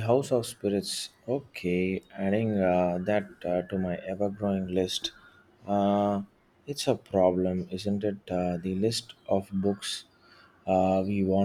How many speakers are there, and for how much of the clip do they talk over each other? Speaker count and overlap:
one, no overlap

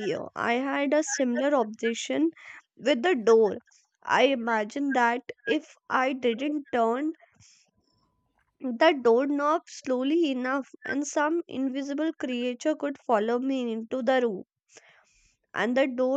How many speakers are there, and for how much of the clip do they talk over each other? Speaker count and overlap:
one, no overlap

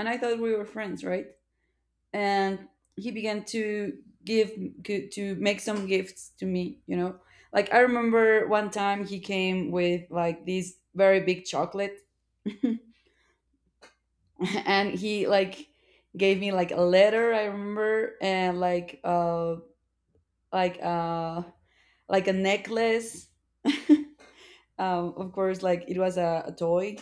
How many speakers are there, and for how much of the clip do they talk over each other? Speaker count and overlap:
one, no overlap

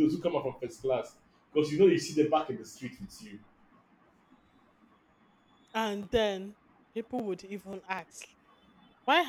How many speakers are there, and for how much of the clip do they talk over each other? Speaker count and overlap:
two, no overlap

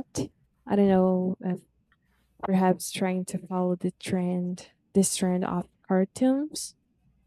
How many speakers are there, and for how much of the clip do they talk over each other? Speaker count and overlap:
one, no overlap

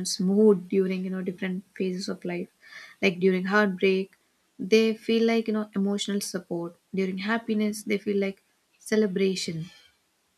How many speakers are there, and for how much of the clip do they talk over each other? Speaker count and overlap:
one, no overlap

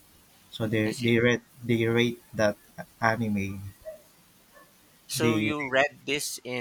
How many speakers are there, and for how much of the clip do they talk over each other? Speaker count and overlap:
two, about 10%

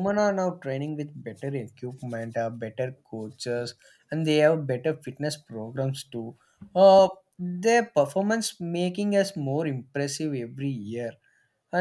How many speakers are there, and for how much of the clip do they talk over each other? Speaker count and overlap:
one, no overlap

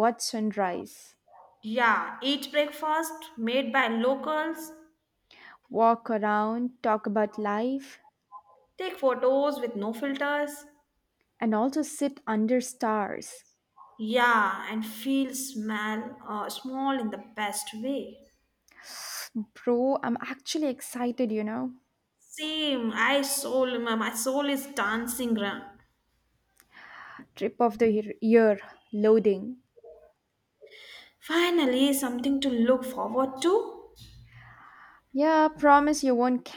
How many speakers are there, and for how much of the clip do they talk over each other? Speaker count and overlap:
two, no overlap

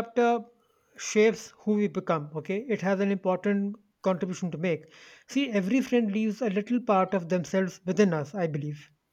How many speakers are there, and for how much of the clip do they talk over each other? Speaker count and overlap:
one, no overlap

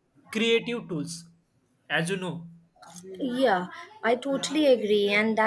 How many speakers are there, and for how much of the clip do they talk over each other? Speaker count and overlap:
two, no overlap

